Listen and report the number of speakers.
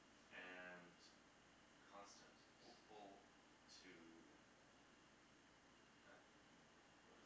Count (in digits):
1